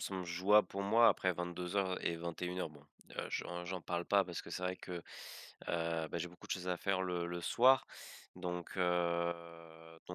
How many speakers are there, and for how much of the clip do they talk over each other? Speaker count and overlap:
1, no overlap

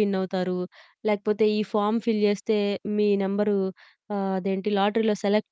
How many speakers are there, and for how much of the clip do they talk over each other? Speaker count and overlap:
1, no overlap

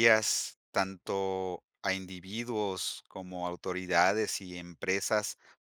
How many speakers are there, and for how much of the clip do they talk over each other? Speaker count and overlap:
1, no overlap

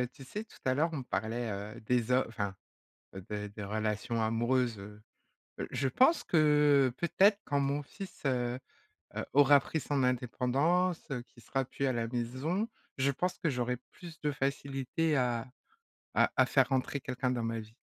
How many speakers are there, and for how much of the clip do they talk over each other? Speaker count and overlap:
1, no overlap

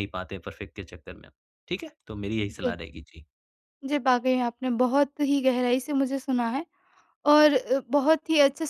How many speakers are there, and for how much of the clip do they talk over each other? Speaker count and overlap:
2, about 1%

